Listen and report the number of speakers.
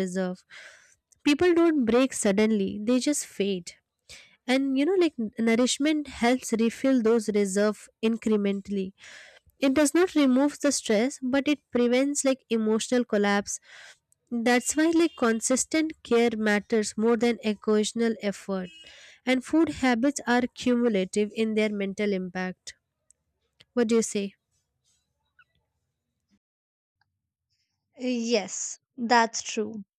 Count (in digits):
2